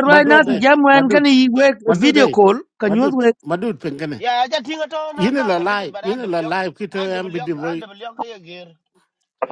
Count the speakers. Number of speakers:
3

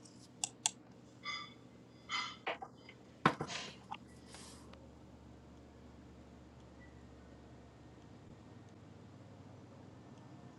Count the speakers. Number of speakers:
0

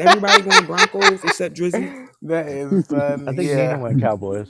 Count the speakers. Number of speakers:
3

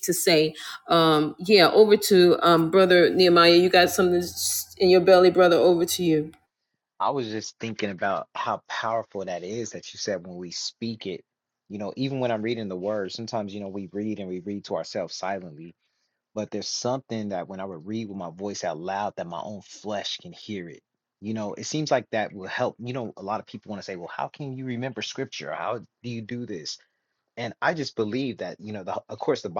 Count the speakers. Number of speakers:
2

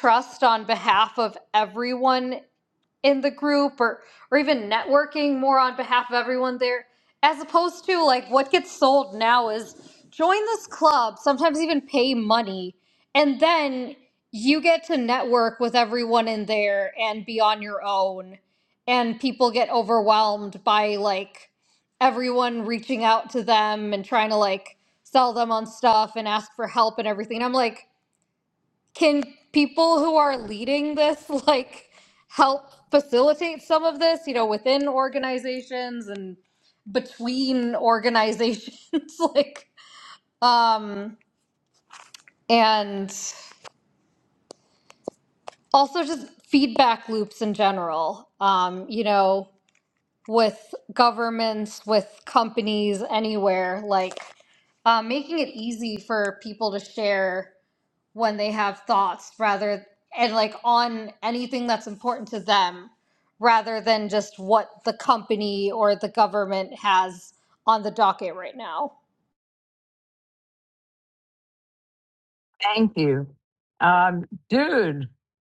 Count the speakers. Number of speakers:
2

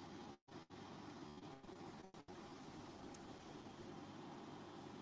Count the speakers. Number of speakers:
0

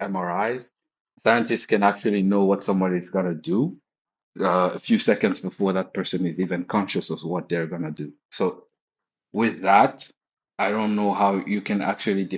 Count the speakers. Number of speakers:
1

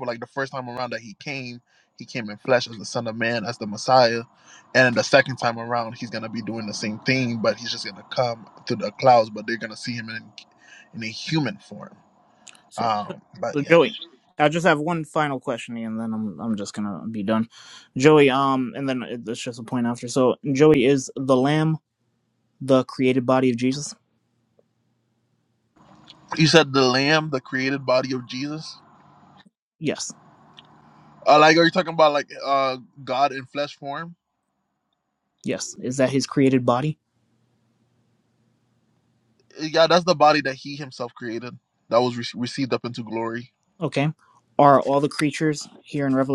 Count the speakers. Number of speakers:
2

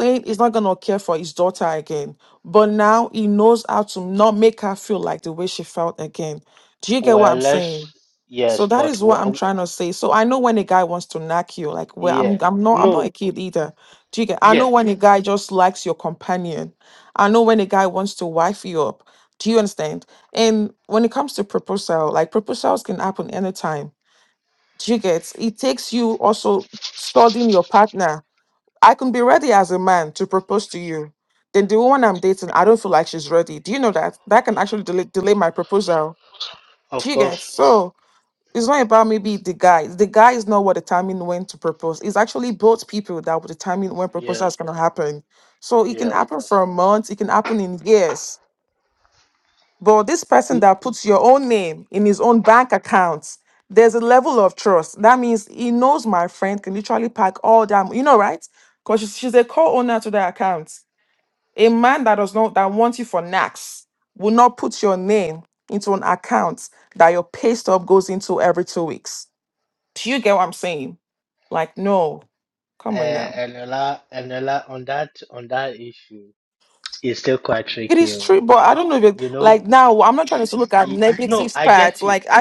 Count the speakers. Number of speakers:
2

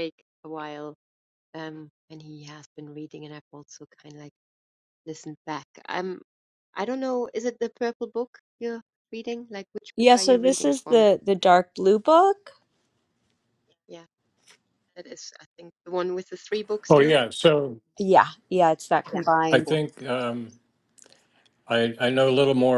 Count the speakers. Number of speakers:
3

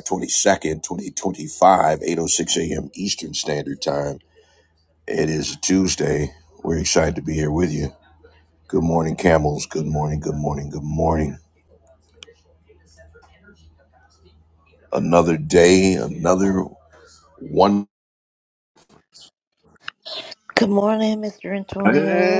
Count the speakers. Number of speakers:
2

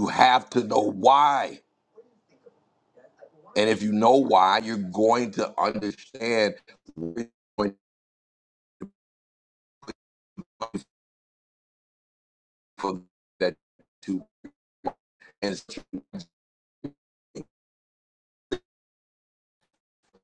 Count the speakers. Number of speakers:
1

